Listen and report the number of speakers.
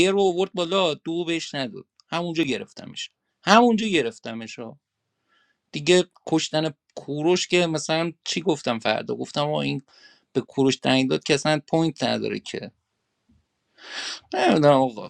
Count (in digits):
1